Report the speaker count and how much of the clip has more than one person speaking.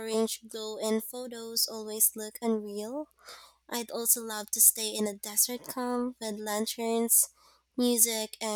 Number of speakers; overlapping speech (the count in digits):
1, no overlap